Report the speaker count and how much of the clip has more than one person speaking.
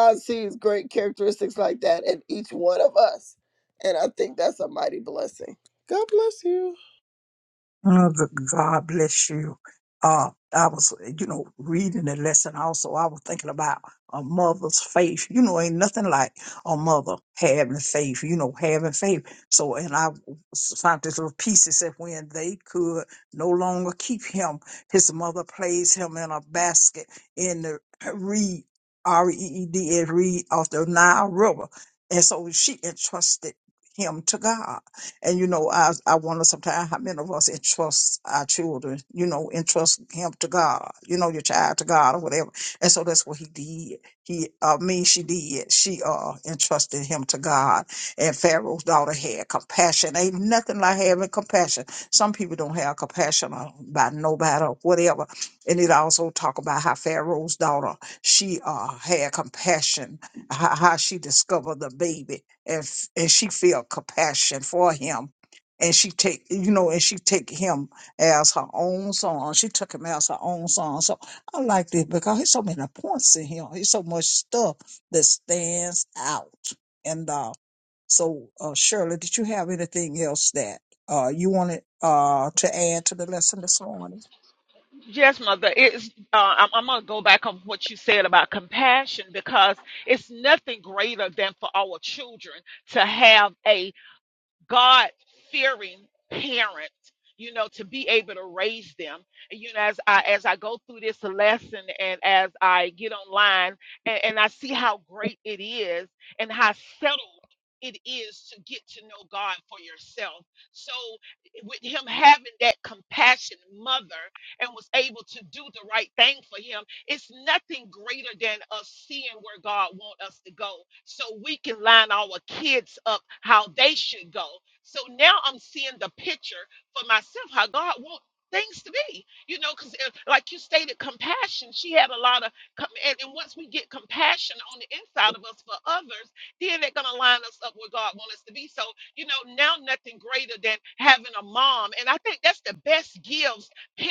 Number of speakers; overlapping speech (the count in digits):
3, no overlap